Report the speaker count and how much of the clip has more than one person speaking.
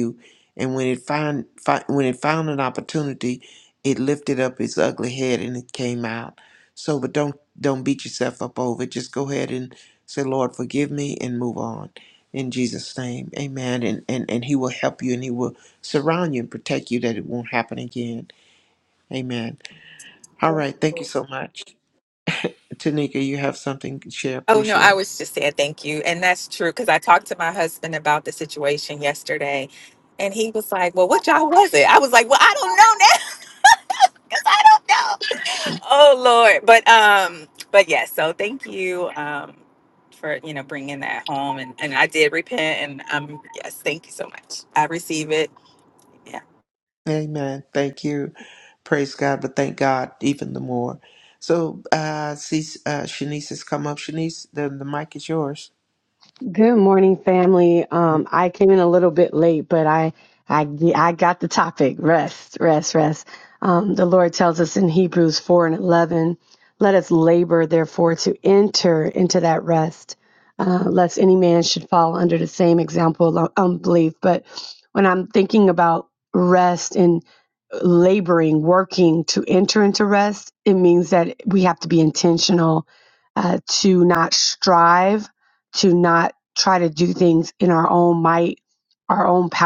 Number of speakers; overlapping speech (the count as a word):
three, under 1%